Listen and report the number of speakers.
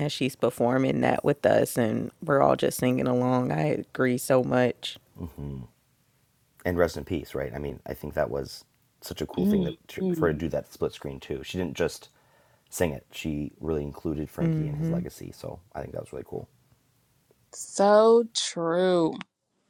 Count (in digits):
3